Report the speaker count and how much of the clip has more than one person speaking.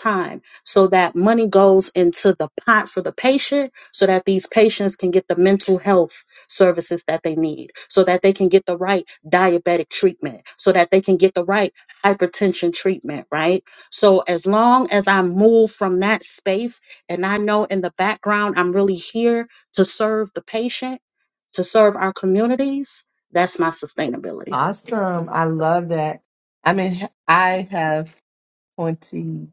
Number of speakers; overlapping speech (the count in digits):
2, under 1%